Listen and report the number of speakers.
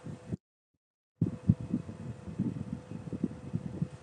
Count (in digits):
0